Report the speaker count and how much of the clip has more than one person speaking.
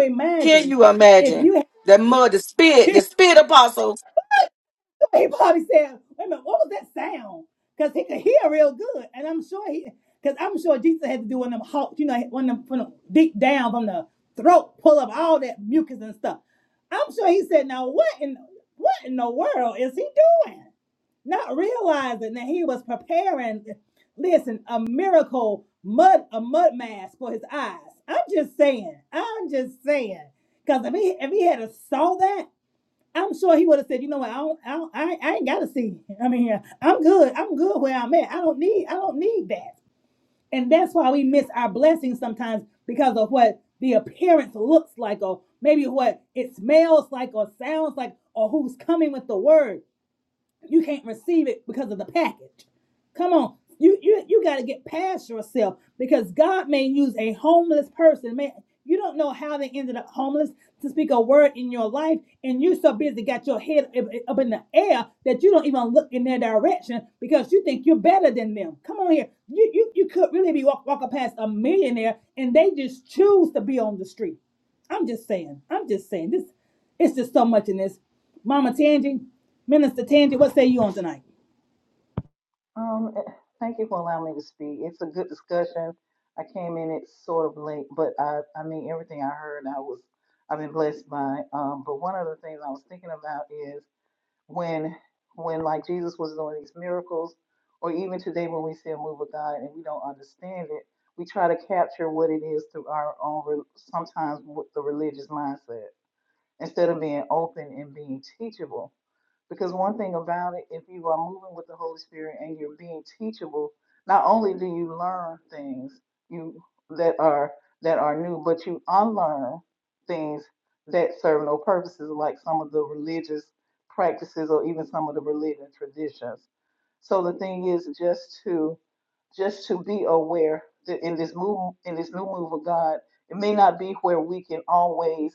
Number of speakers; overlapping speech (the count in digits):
3, under 1%